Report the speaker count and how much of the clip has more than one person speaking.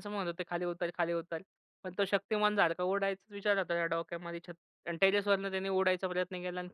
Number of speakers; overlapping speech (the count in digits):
1, no overlap